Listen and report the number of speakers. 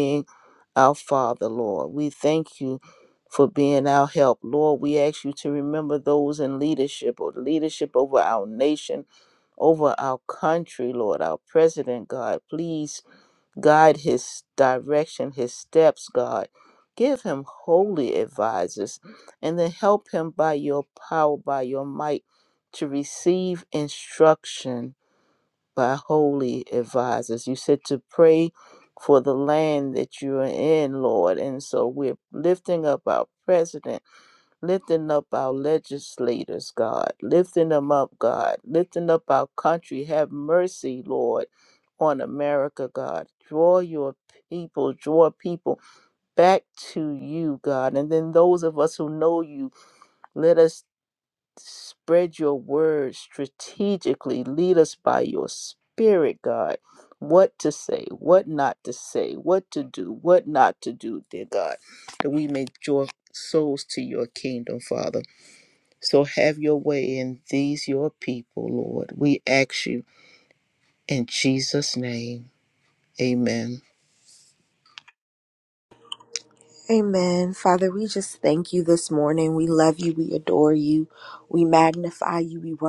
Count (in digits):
2